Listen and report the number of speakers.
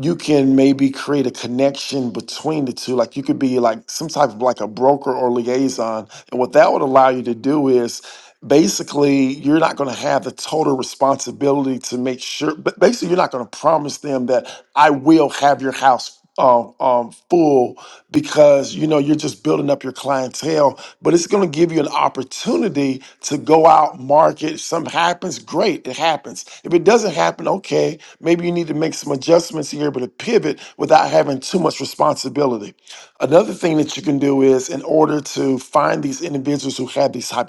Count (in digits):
1